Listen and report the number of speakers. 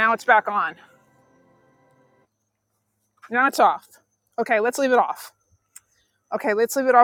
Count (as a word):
one